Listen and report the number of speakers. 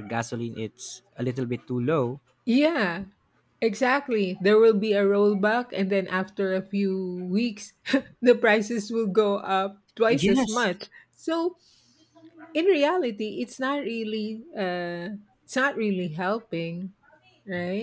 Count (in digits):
2